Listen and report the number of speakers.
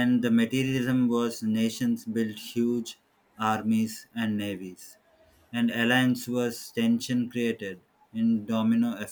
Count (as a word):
one